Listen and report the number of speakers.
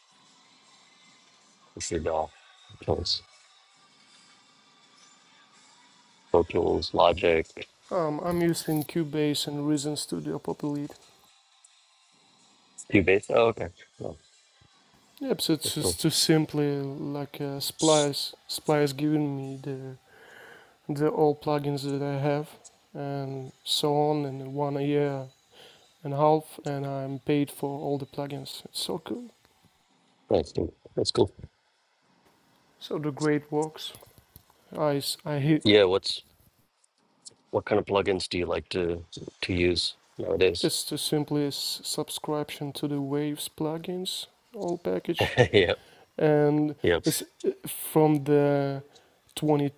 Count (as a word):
two